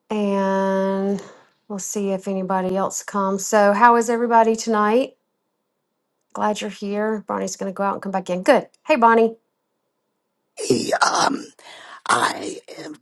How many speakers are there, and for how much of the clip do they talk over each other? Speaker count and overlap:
2, no overlap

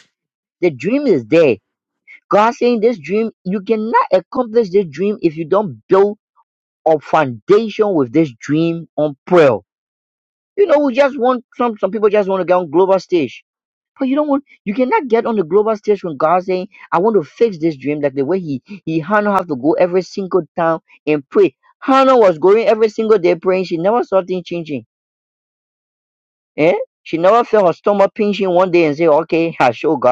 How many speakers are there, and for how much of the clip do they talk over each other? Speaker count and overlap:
1, no overlap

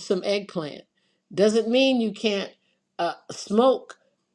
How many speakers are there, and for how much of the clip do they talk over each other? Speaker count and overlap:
1, no overlap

